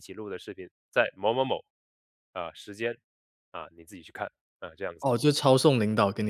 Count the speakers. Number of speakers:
2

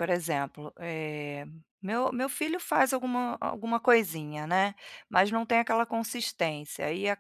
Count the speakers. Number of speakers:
1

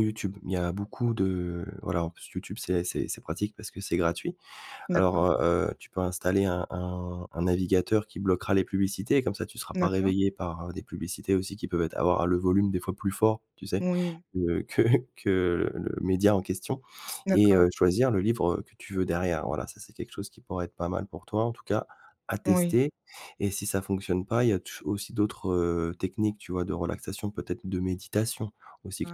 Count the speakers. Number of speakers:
2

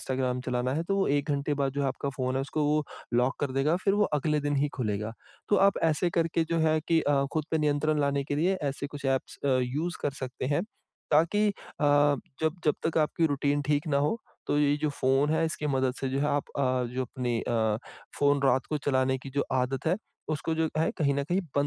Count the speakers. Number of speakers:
1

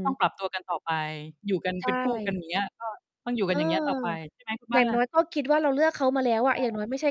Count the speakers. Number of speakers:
2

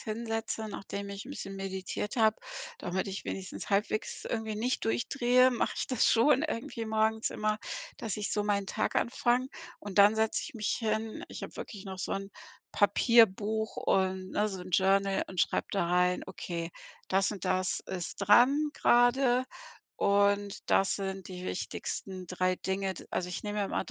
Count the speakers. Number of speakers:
1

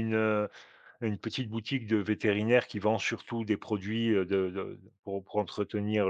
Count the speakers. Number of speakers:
1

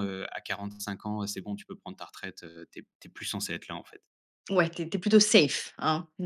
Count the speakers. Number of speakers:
2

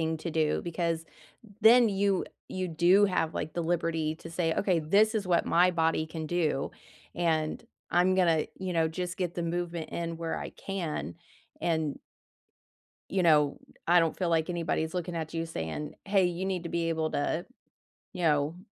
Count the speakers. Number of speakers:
1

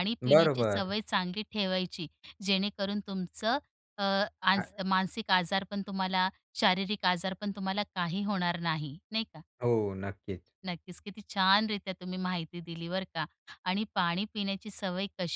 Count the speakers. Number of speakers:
2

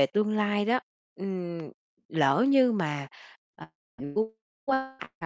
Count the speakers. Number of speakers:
1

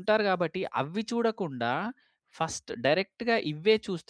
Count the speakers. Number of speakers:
1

